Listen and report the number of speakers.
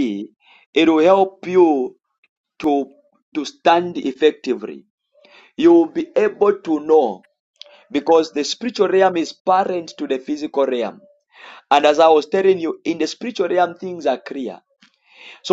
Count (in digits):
1